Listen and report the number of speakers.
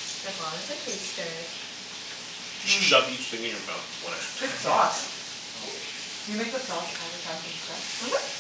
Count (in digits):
3